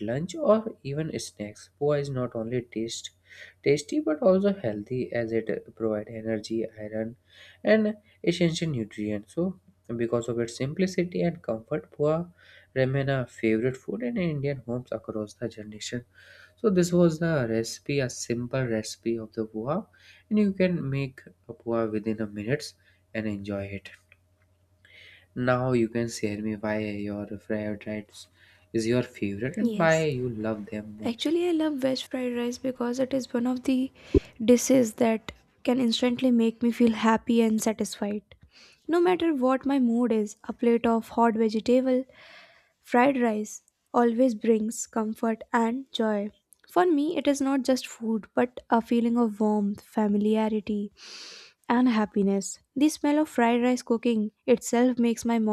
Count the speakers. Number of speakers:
two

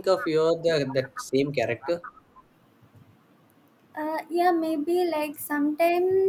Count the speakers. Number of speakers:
two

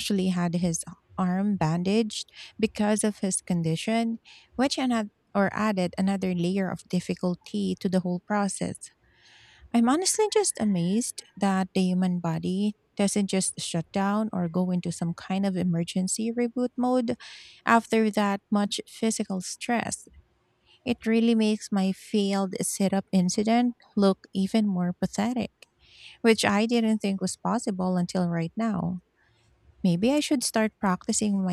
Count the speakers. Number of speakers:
one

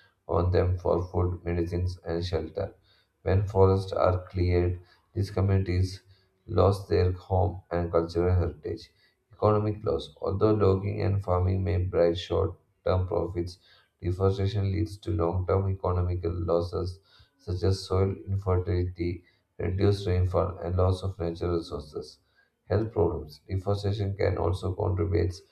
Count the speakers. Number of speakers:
one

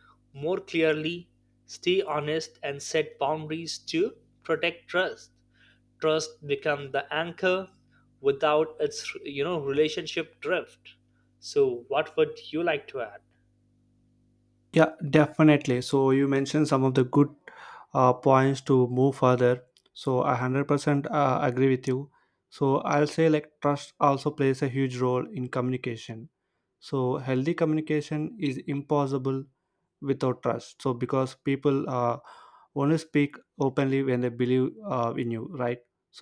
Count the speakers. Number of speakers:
two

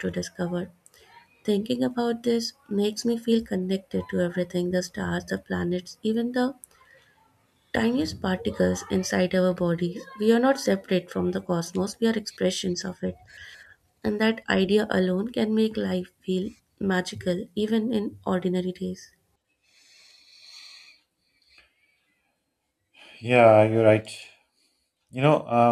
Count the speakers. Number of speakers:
two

